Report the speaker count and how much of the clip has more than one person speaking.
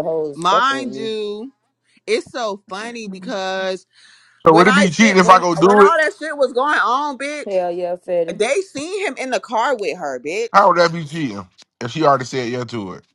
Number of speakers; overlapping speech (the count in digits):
3, about 17%